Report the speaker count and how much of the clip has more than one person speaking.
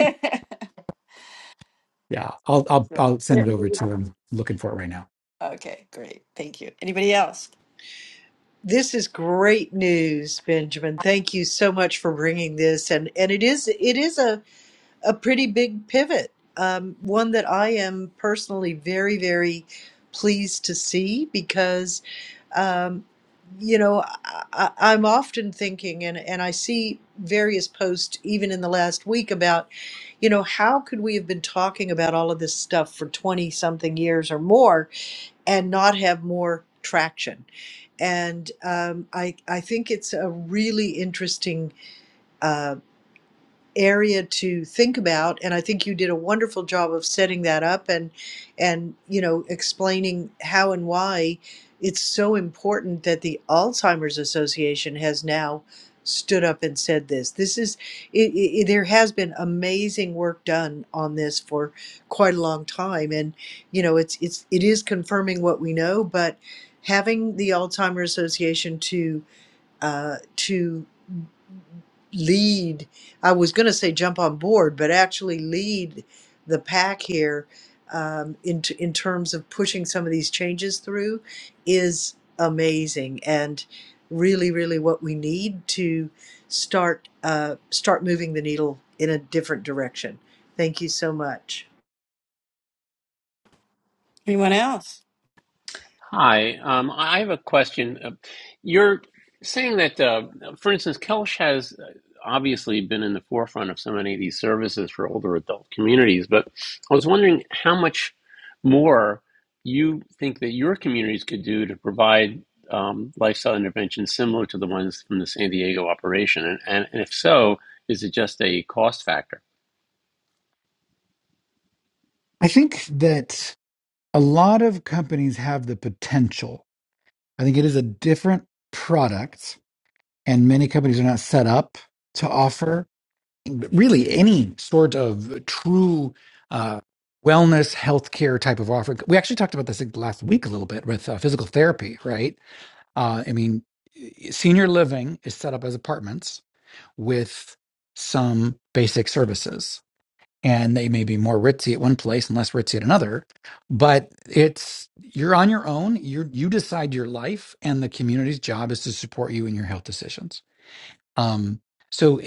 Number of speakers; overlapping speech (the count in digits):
4, under 1%